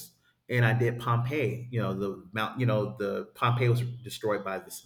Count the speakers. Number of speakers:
1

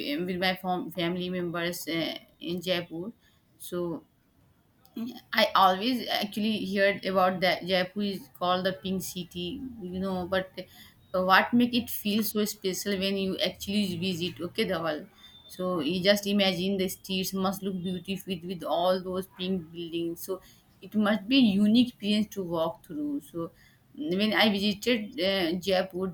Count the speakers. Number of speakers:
1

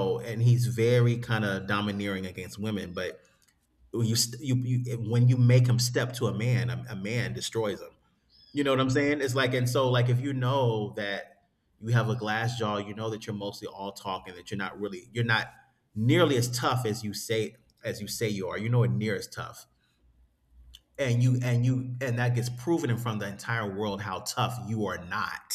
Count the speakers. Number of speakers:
1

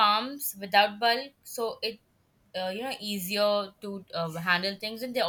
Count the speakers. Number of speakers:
1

